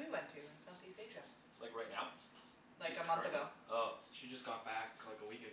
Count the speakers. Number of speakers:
three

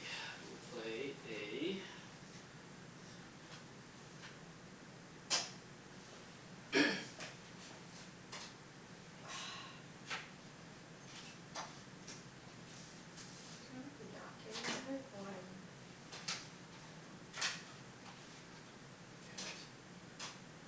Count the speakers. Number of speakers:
two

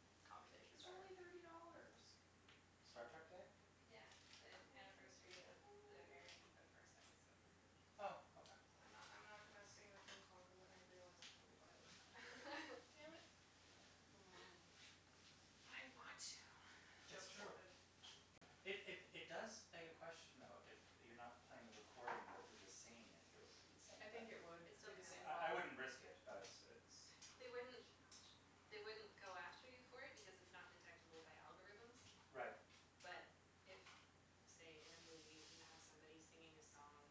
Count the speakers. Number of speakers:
four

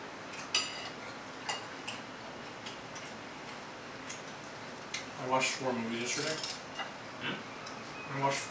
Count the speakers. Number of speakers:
one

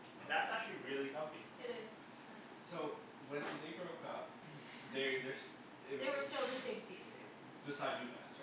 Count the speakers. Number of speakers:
three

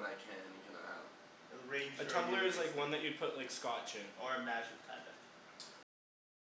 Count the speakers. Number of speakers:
three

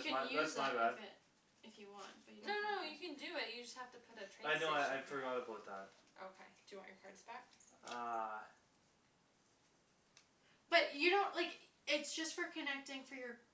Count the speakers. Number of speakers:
three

